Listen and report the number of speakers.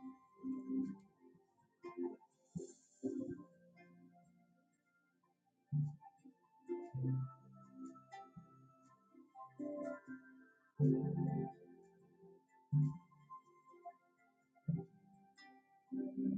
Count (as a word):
zero